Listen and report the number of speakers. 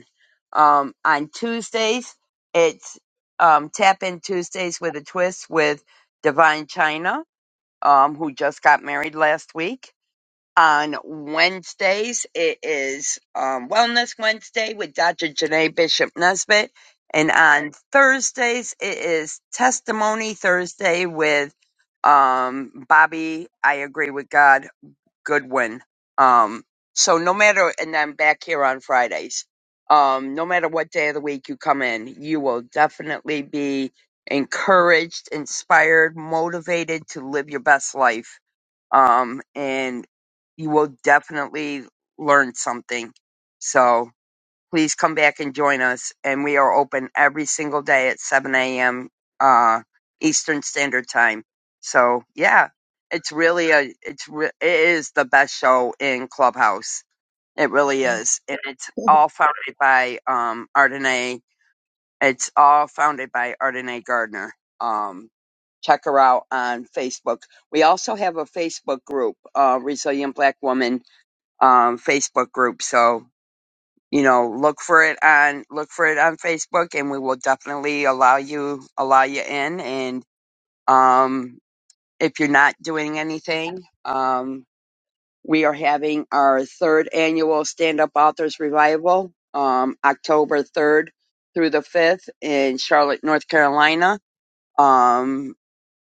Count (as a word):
one